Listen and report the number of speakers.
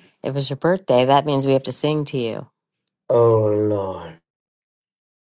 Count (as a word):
two